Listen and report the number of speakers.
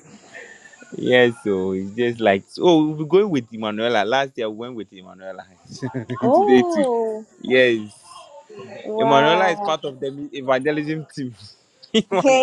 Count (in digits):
2